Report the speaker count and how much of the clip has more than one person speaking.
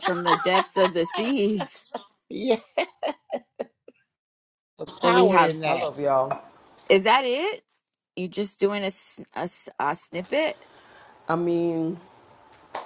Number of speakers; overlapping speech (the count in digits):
3, about 5%